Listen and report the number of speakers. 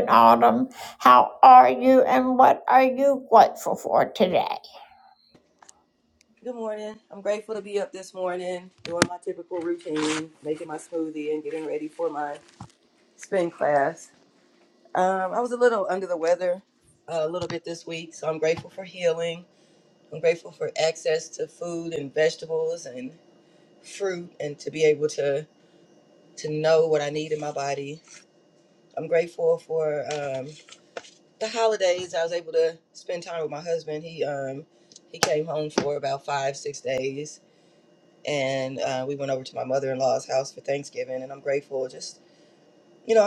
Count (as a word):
two